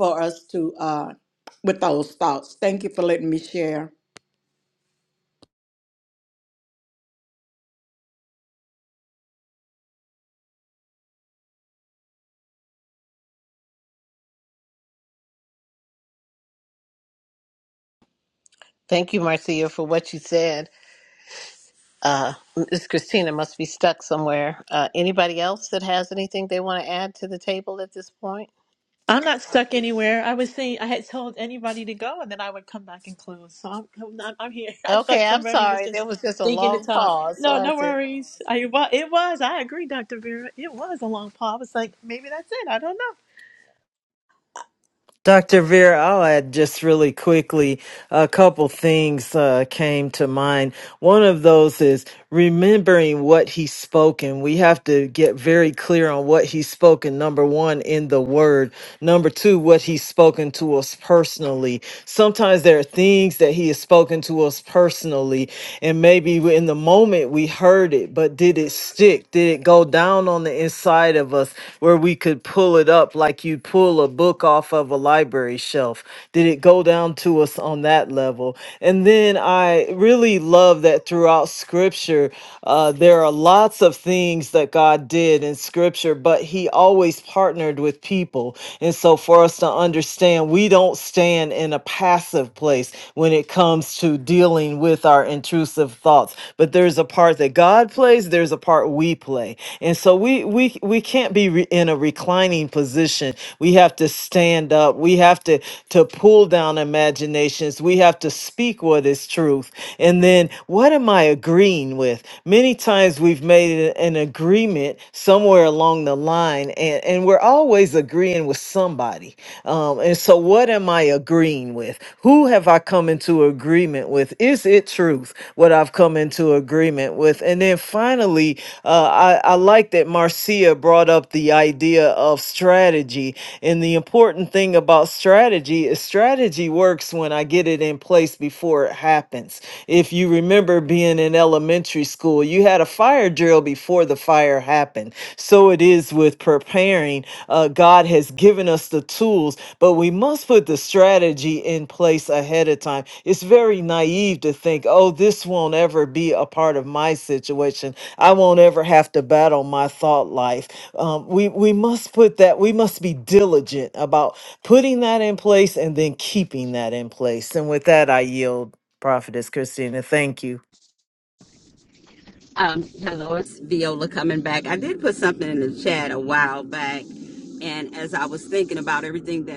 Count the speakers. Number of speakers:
5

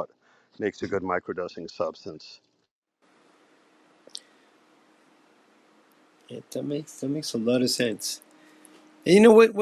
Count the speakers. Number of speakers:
2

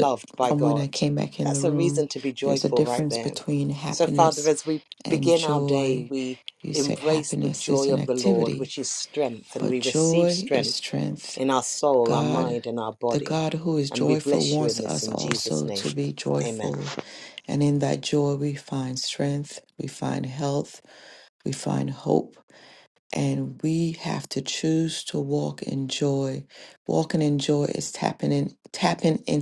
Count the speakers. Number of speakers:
2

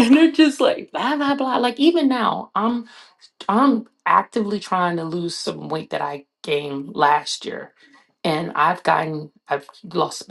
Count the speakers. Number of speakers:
1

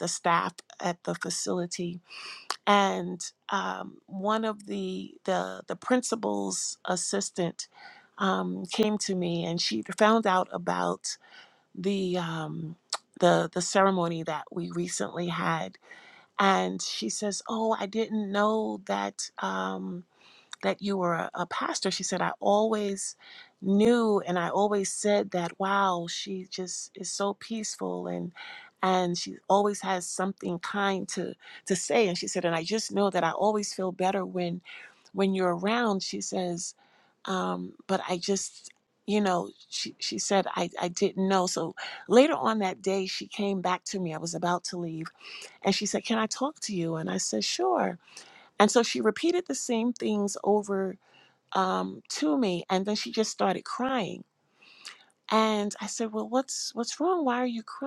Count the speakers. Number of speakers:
1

